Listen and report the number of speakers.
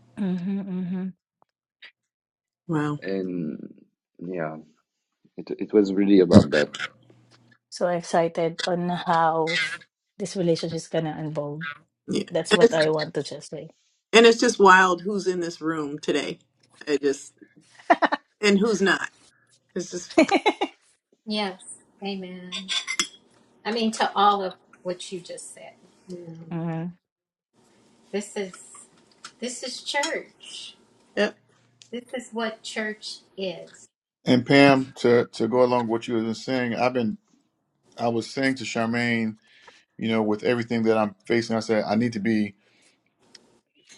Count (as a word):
five